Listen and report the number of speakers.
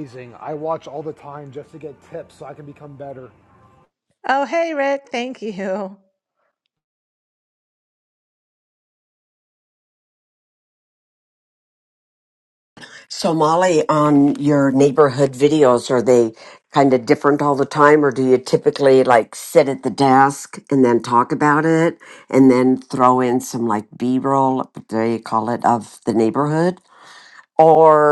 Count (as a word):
three